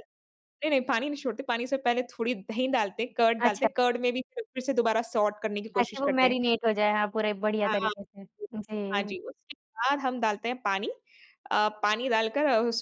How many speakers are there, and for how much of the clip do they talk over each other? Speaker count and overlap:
2, about 11%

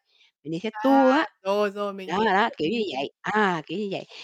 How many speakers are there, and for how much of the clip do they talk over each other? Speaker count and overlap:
2, about 12%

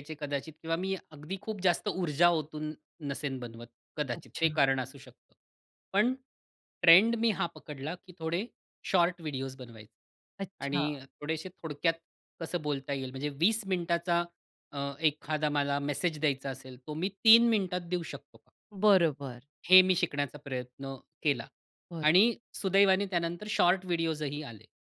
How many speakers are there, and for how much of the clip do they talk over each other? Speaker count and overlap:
2, about 3%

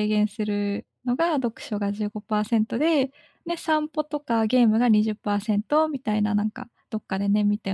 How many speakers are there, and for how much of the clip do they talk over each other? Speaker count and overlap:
1, no overlap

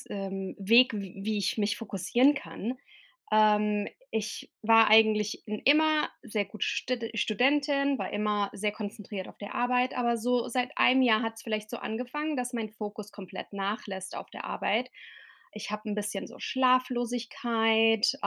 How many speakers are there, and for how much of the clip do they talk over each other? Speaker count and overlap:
1, no overlap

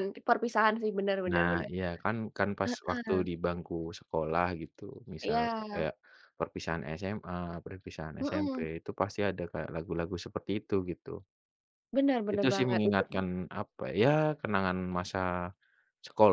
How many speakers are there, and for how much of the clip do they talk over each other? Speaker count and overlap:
2, about 16%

